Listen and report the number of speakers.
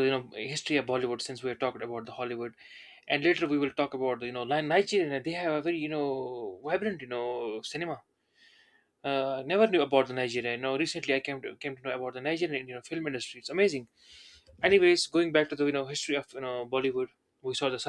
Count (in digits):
1